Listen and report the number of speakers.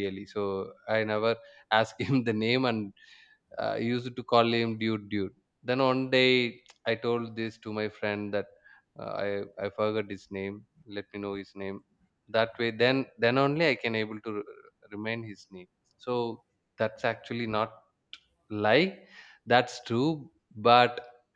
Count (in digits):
1